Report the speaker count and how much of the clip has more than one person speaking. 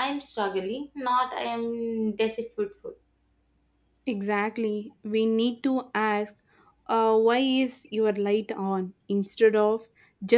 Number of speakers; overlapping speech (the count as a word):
two, no overlap